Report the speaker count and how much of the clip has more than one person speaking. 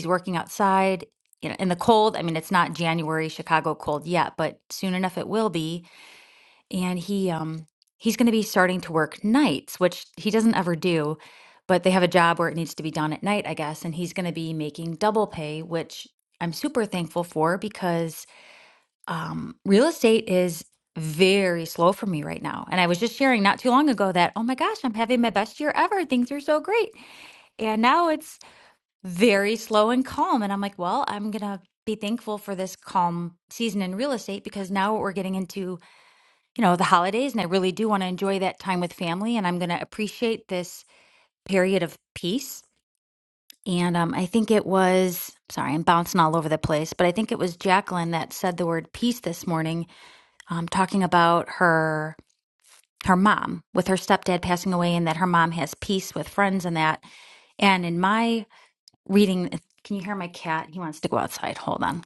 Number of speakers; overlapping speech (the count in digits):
1, no overlap